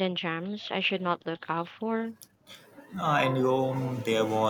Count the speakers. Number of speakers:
two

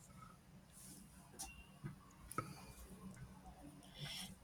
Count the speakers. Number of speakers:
zero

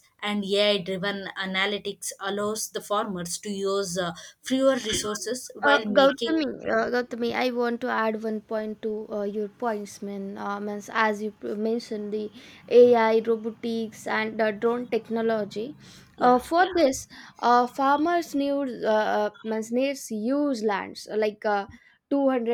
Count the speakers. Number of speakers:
two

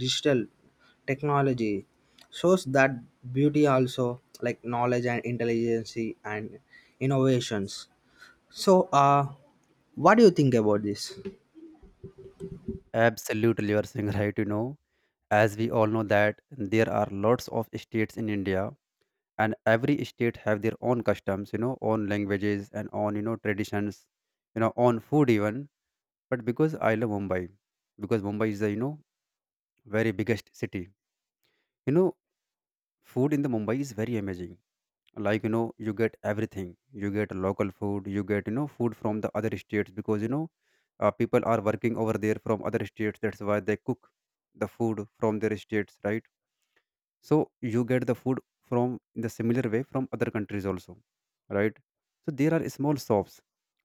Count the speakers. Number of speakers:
two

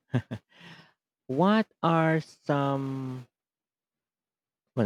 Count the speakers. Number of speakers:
one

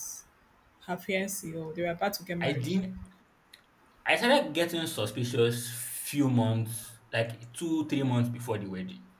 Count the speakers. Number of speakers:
two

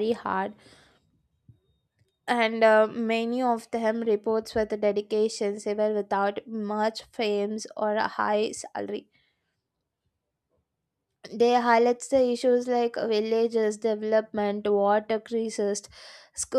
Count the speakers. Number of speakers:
one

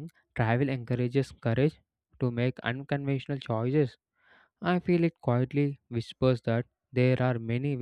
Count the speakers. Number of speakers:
one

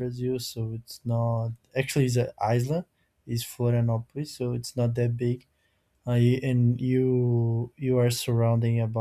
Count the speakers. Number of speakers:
one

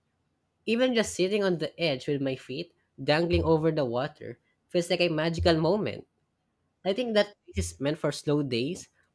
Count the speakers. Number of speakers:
one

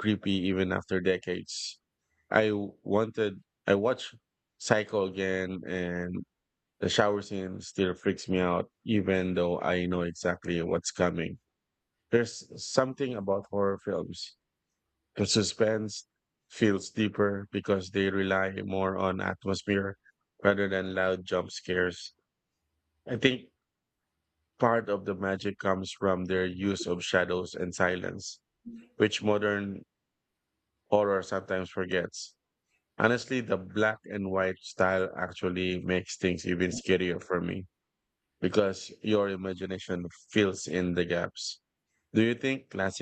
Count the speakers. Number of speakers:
one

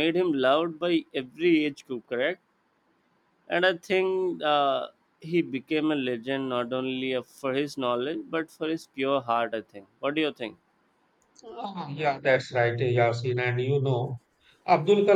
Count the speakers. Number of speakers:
two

